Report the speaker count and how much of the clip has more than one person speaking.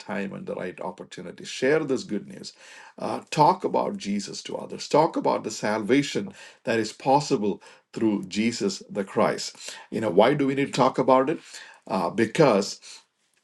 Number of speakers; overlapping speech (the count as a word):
one, no overlap